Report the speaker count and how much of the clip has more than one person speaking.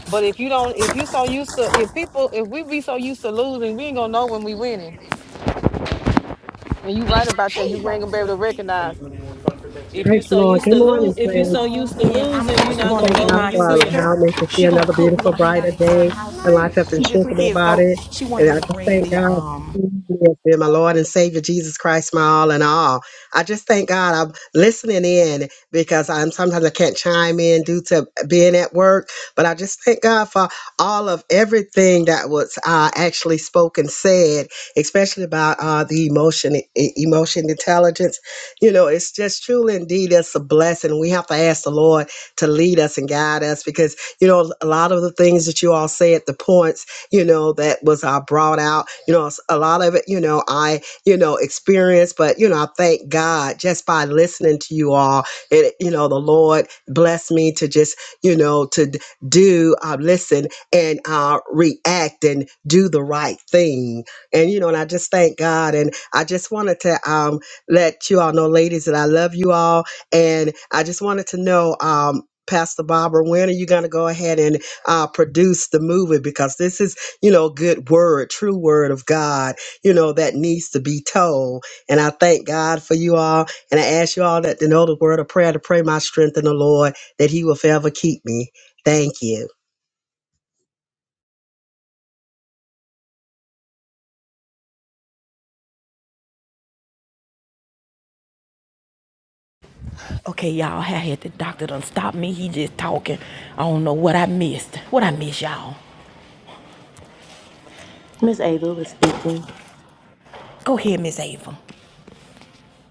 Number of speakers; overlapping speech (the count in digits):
4, about 8%